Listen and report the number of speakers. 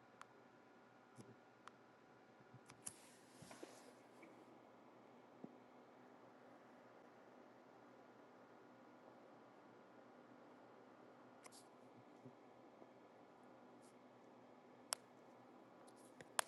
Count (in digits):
0